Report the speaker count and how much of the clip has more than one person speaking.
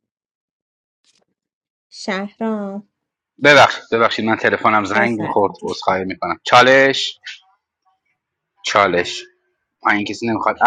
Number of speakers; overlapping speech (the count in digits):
2, about 7%